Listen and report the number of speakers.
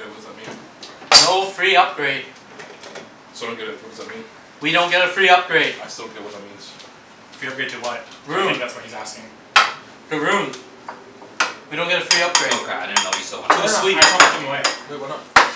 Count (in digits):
4